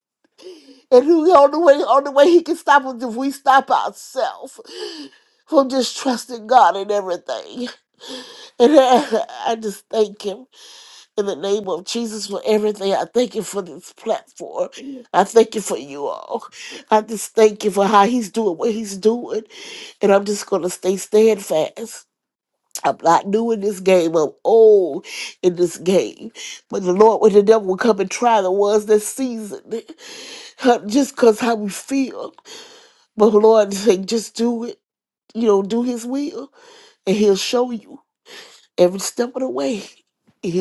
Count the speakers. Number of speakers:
1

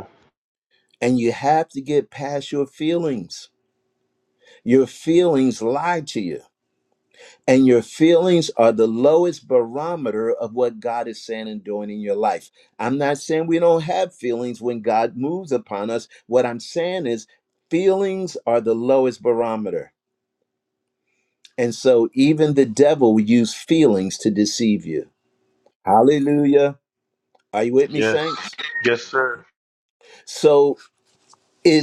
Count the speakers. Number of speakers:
2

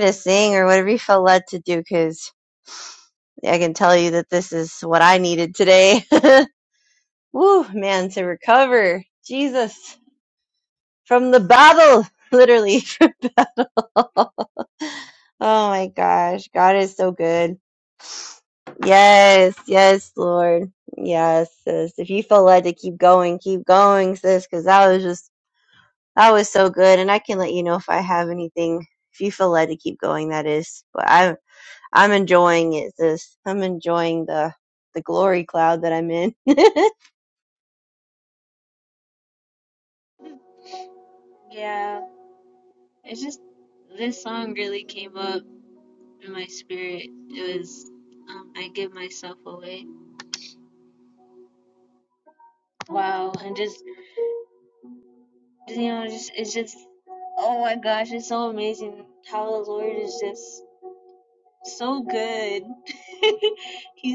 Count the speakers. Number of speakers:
2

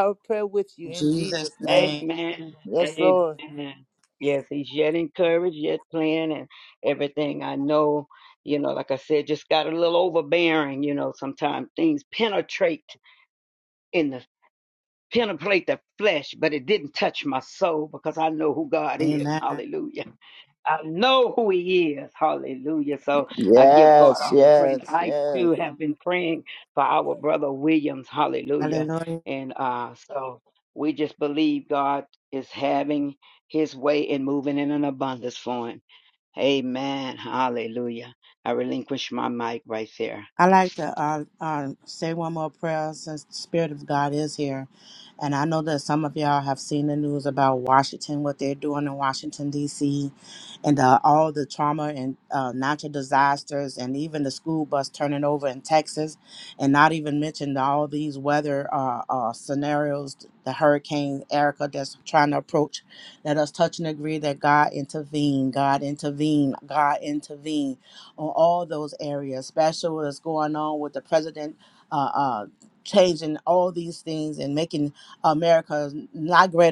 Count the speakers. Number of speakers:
3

